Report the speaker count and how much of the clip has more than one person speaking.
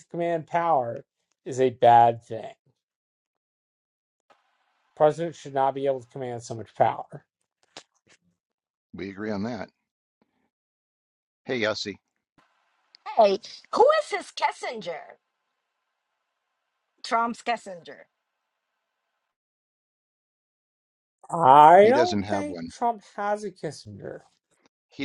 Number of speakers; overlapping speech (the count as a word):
three, about 4%